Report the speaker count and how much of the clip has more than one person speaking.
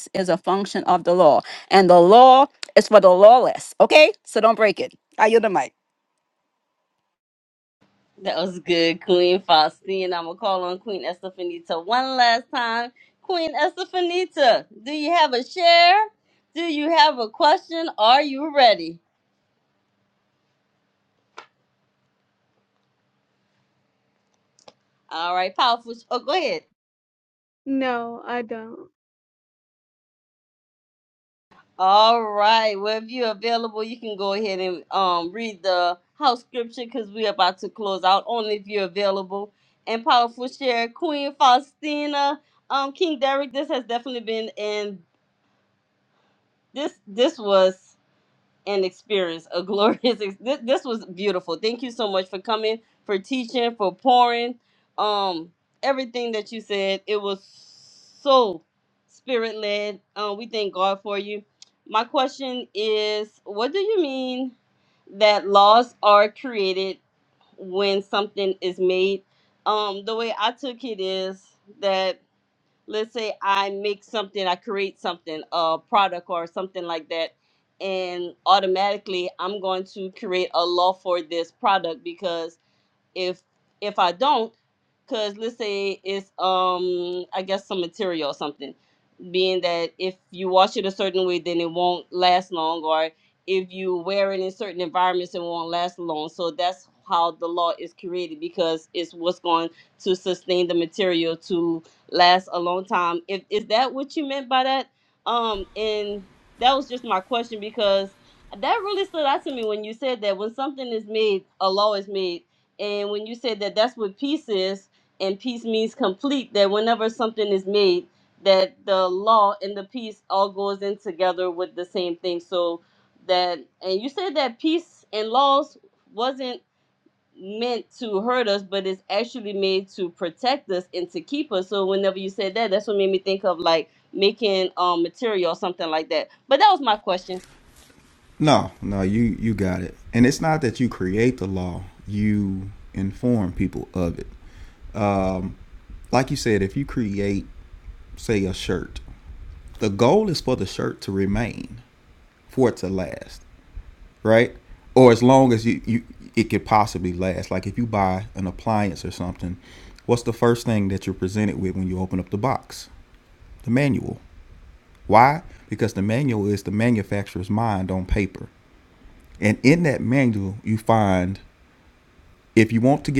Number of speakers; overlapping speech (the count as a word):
four, no overlap